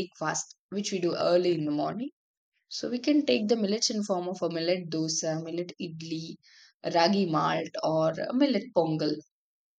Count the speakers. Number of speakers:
1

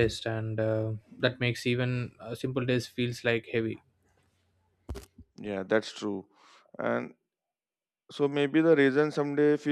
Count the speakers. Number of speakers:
2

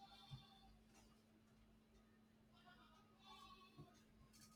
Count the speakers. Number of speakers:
0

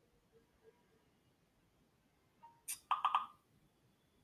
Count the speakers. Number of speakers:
0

